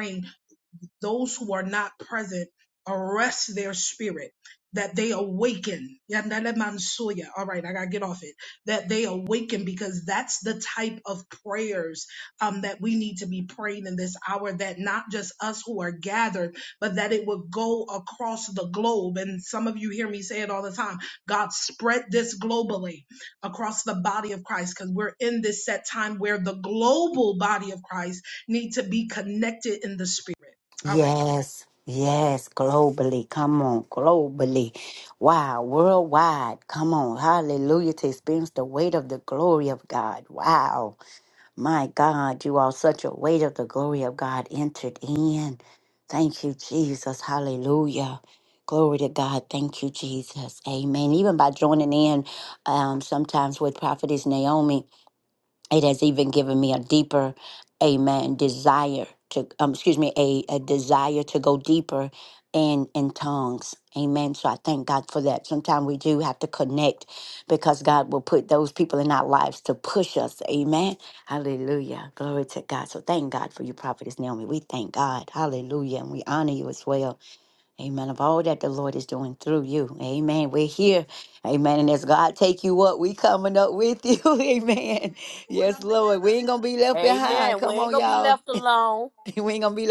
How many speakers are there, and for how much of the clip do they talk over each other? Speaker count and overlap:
3, about 2%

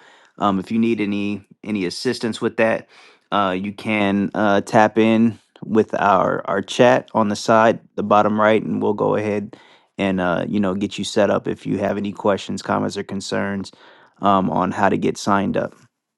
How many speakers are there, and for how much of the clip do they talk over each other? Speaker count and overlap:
1, no overlap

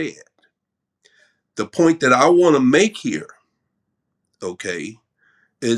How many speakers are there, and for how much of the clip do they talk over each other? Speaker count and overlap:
1, no overlap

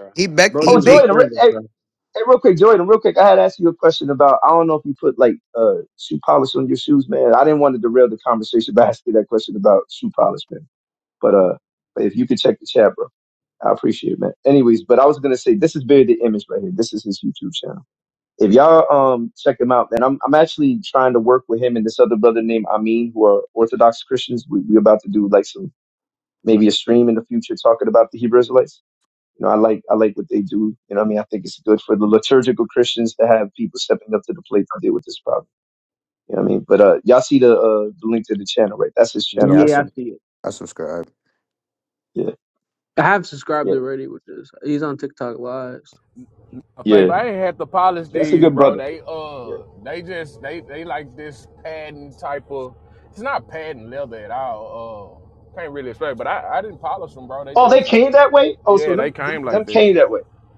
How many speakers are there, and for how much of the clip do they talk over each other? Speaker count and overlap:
4, about 7%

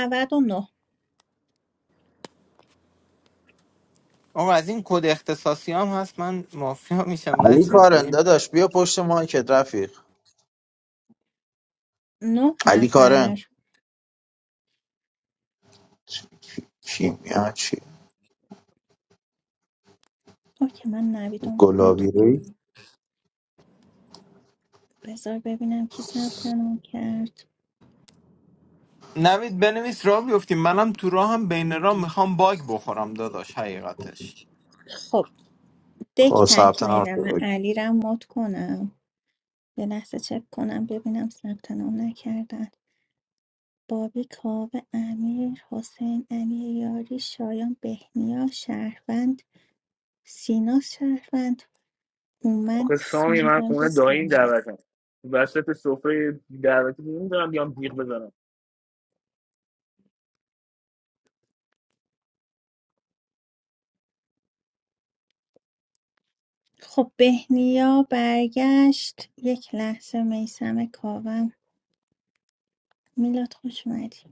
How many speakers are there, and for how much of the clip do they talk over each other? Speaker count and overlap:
4, about 7%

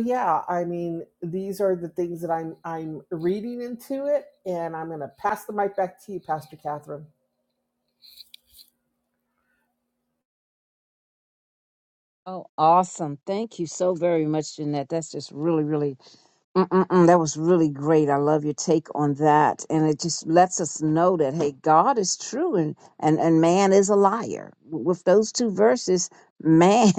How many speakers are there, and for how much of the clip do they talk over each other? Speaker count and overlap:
2, no overlap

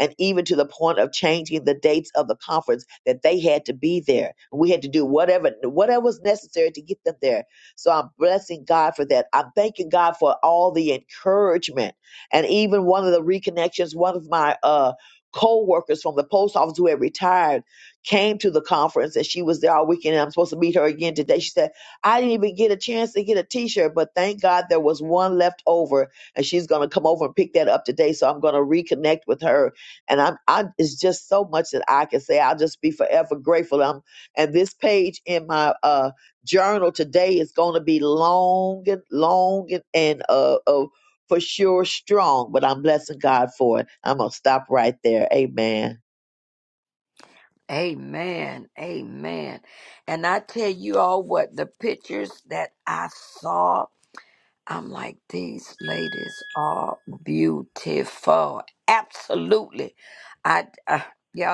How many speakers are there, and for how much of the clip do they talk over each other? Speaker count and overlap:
2, no overlap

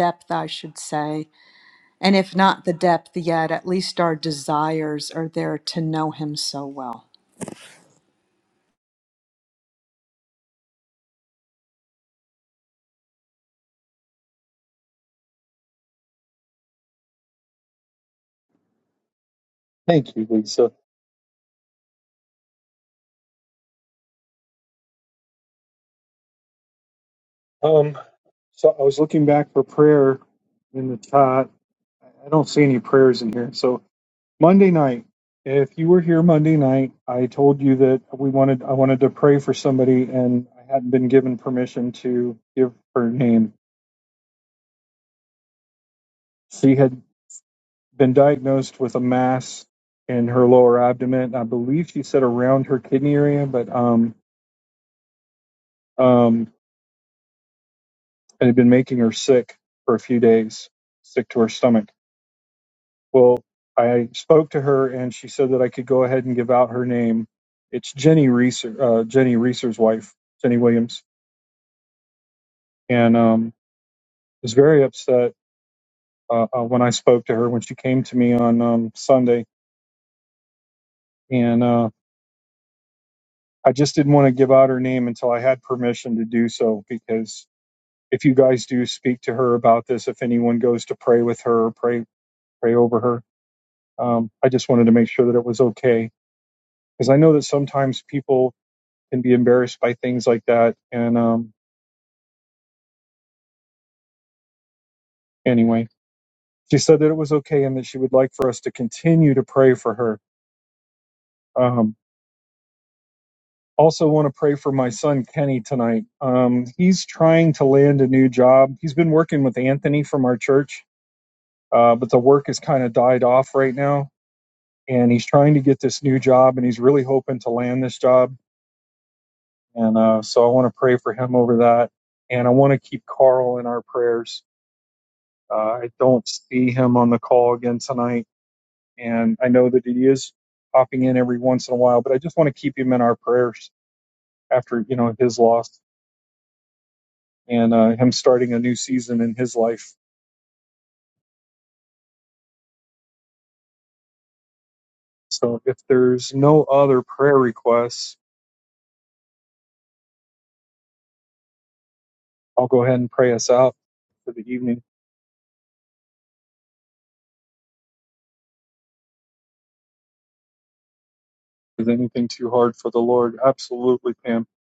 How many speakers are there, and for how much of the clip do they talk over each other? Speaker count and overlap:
2, no overlap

